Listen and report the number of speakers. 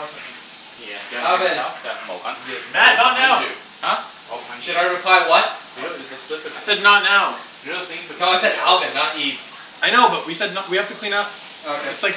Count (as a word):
four